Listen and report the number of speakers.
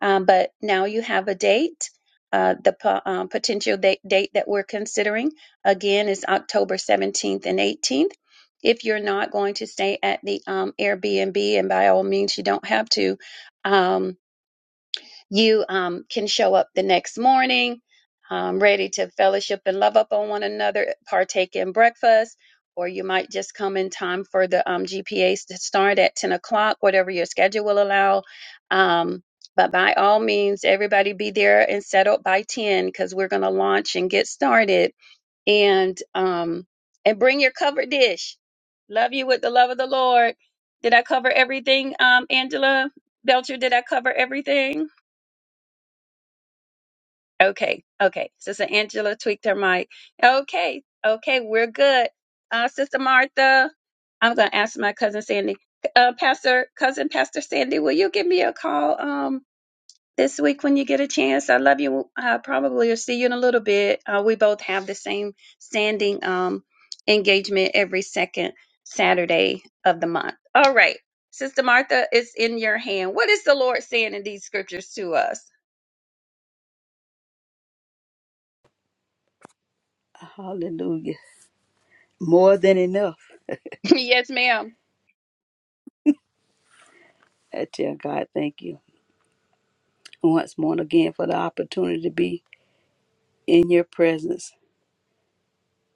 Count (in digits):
2